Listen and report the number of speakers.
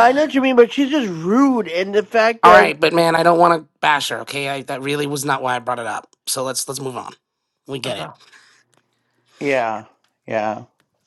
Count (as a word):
three